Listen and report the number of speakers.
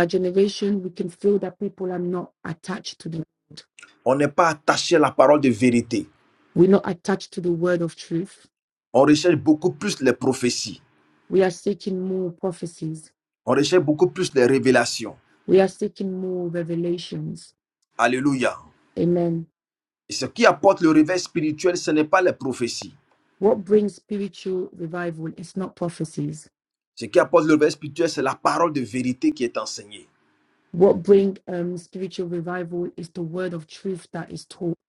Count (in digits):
2